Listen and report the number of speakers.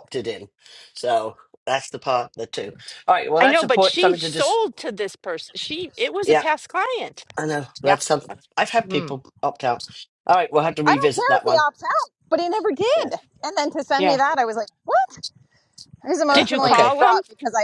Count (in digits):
3